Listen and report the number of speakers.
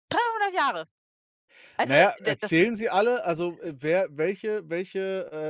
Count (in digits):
2